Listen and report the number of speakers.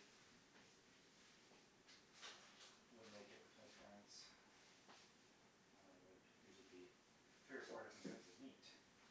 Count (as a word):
one